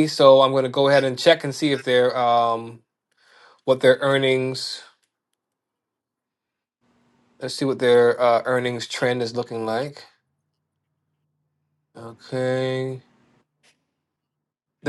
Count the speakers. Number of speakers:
1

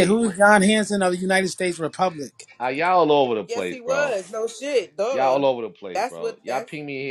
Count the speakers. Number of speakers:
3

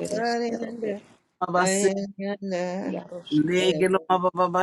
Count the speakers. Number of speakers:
3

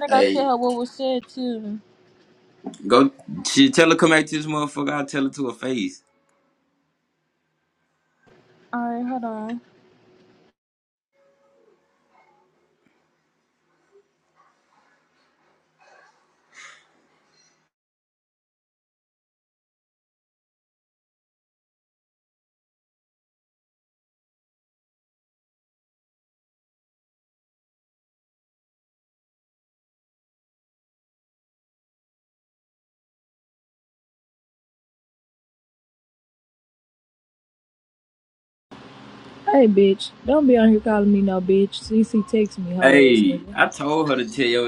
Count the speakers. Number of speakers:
3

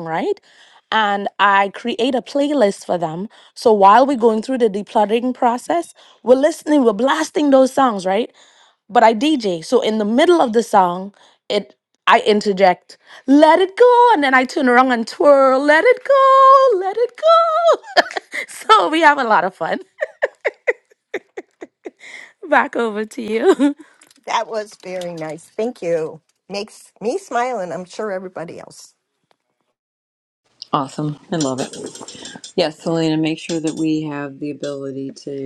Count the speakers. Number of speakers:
3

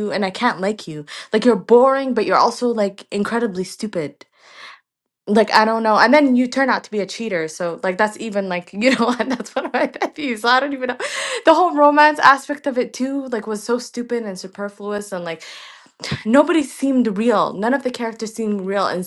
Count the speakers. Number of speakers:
1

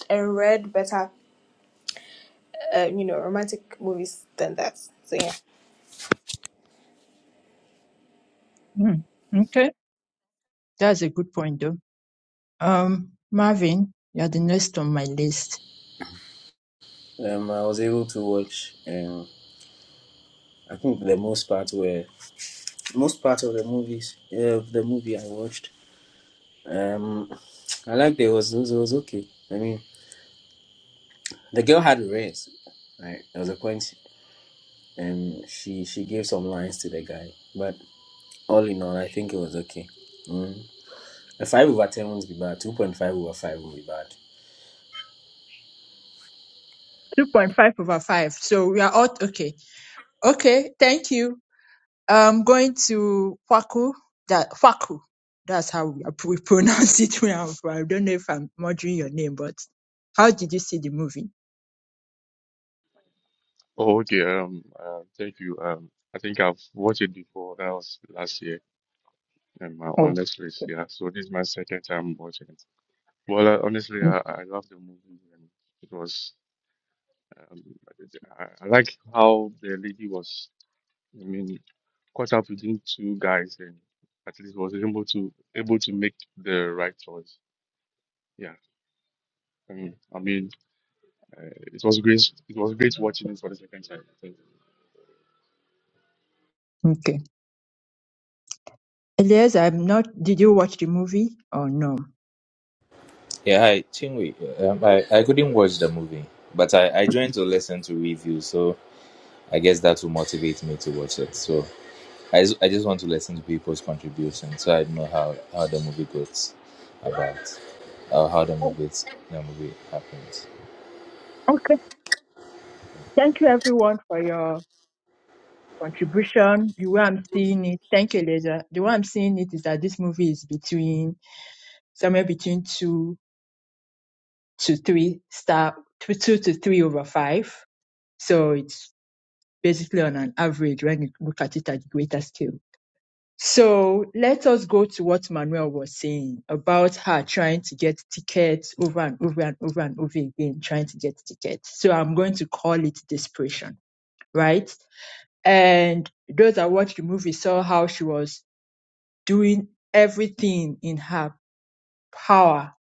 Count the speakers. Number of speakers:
5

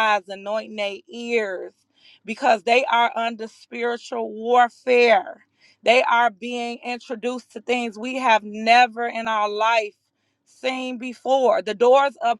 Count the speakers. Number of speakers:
1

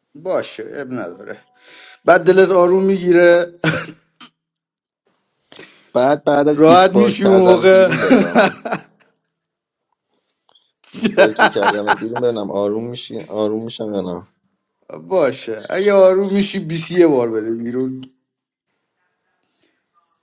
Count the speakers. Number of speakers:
2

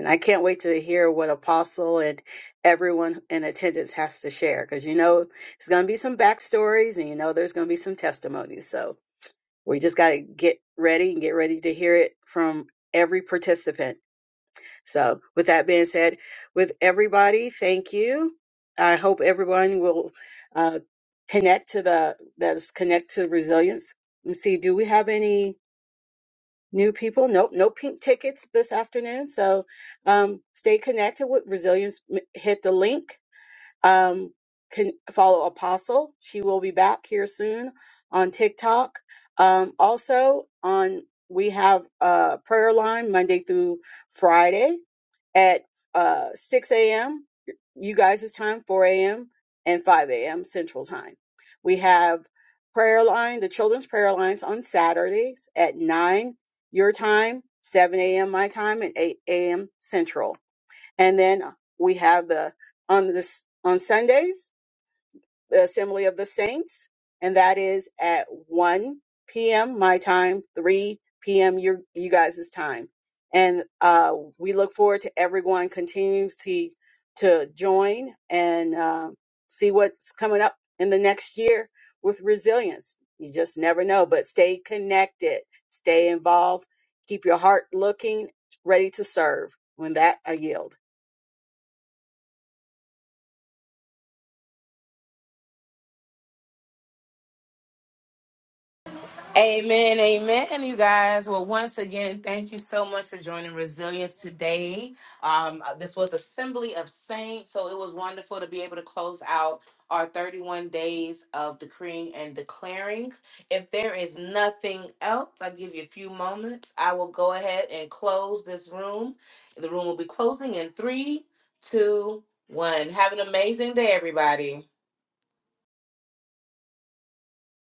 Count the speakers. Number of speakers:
2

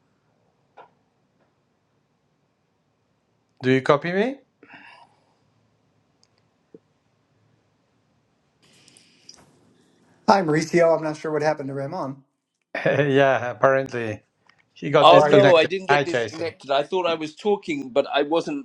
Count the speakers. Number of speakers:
3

